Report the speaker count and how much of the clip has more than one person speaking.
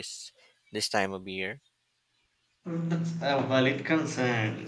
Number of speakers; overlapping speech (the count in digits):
2, no overlap